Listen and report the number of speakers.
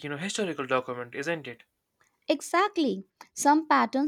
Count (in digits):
2